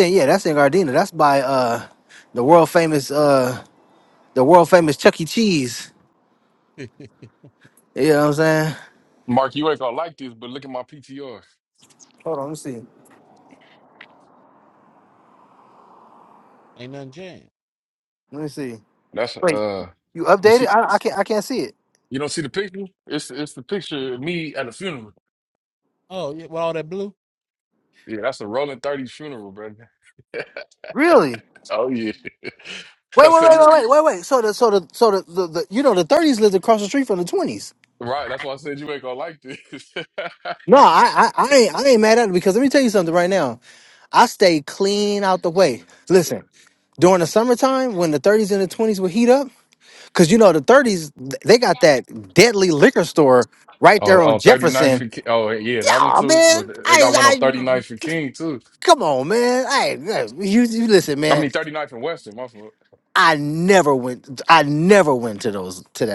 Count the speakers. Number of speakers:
3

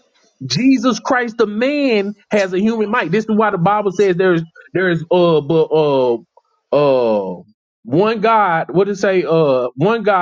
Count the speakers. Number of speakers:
1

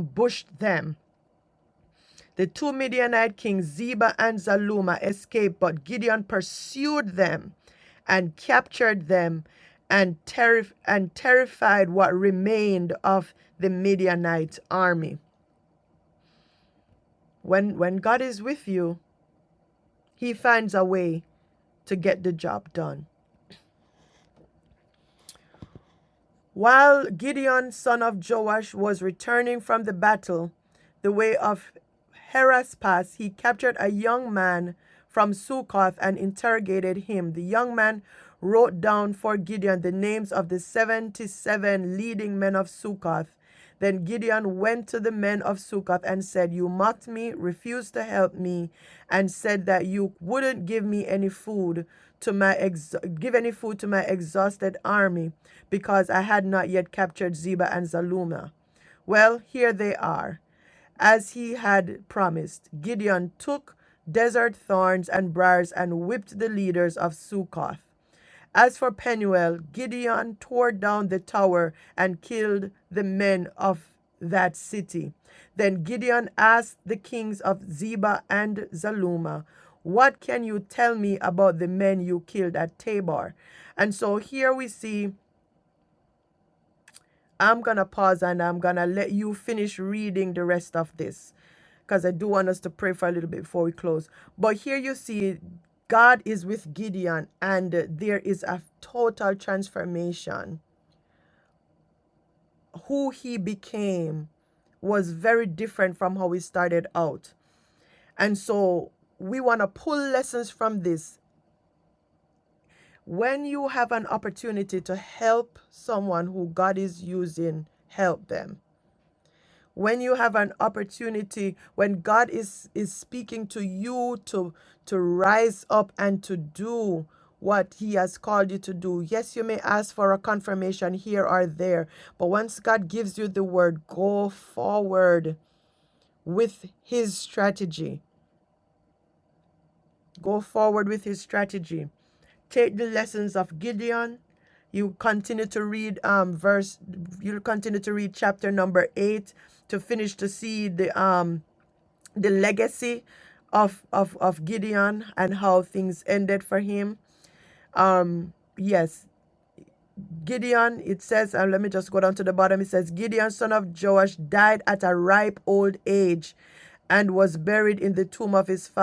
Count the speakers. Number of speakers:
1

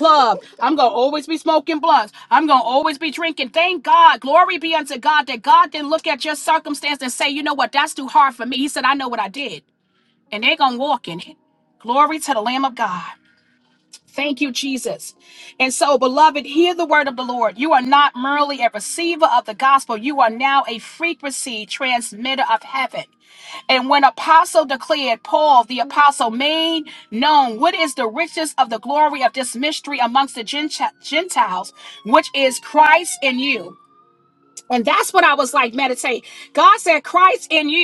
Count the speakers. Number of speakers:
1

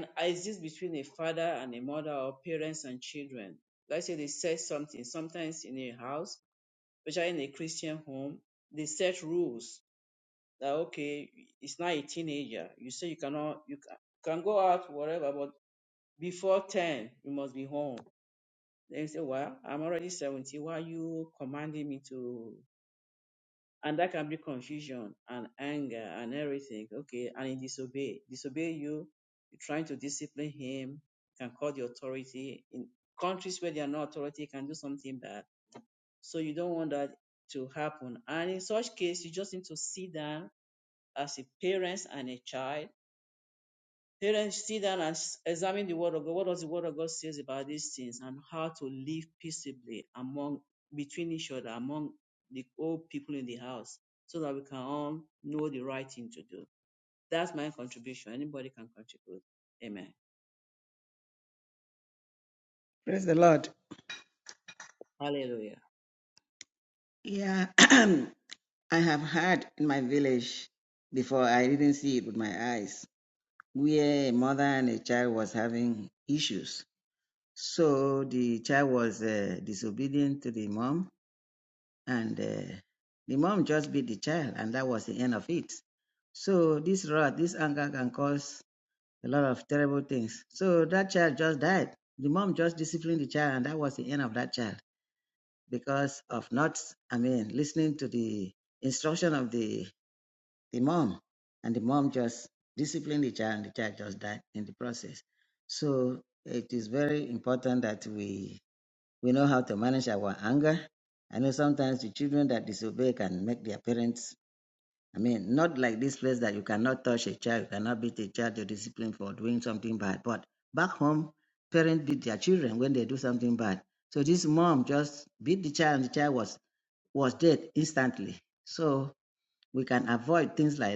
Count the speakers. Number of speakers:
2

